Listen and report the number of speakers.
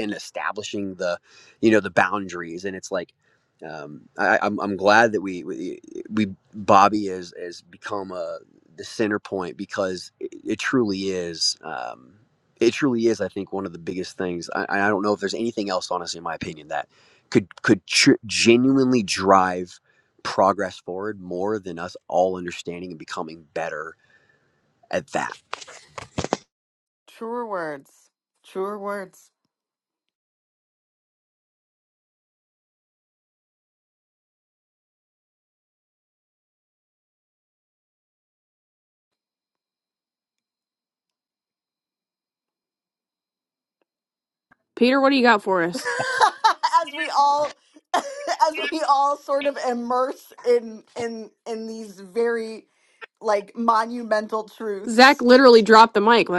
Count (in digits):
3